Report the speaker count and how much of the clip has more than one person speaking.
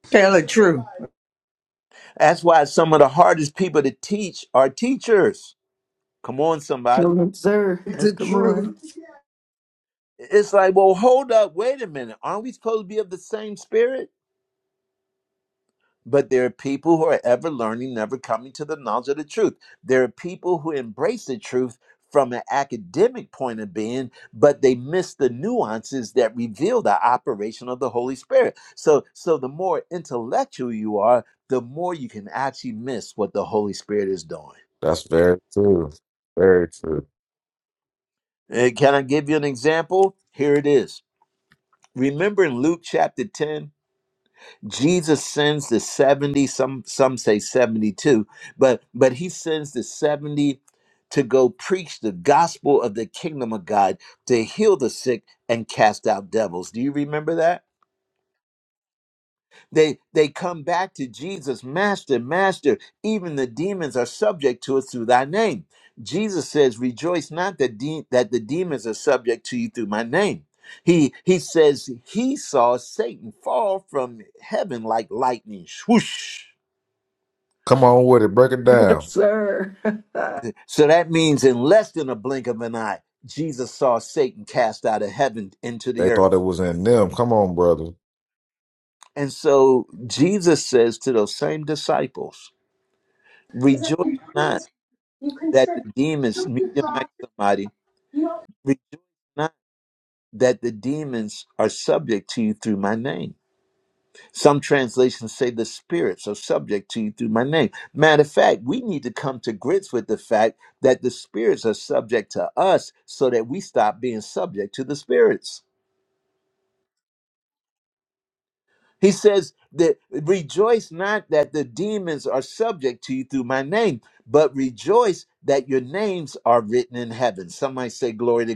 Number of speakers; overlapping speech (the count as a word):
four, about 1%